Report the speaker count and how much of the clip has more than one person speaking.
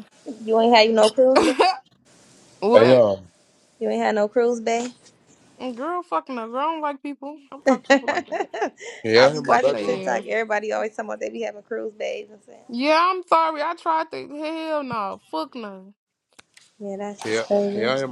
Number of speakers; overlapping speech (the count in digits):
3, about 16%